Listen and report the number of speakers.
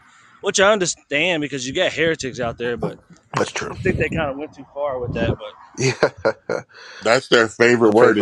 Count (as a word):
three